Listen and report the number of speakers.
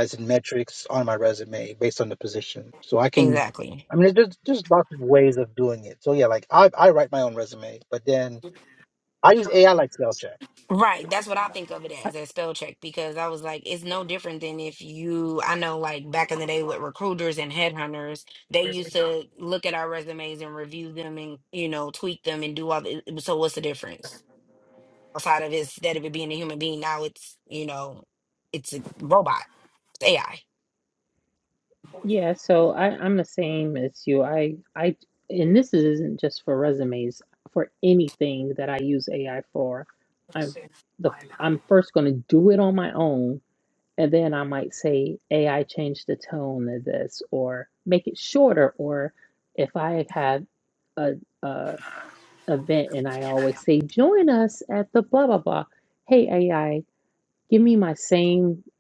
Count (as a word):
three